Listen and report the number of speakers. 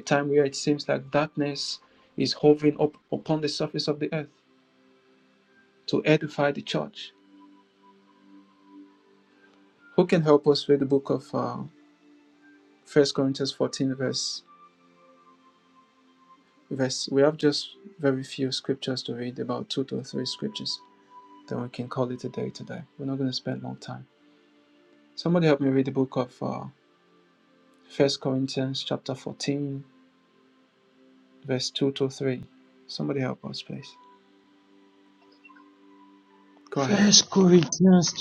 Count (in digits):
2